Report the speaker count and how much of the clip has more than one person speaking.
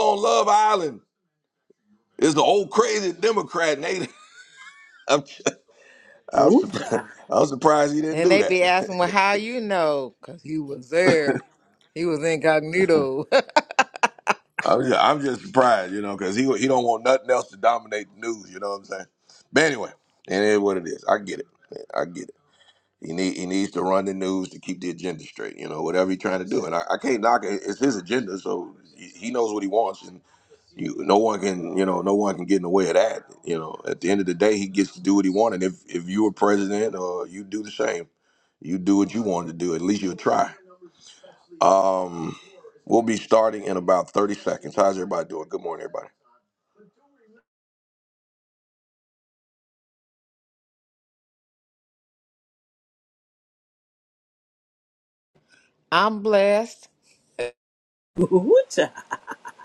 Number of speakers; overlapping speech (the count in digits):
3, about 2%